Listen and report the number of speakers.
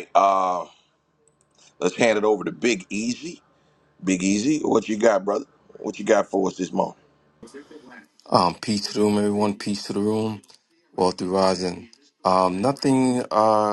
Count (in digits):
2